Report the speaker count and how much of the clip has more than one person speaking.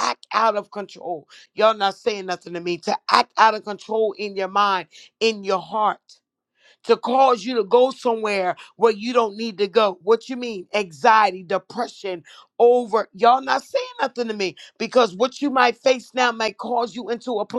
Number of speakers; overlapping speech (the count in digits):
1, no overlap